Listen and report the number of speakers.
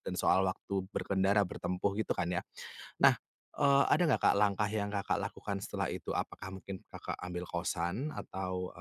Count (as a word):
one